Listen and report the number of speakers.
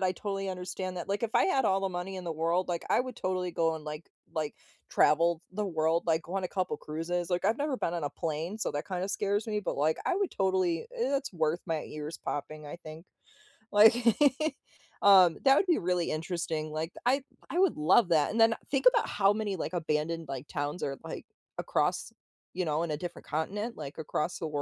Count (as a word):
one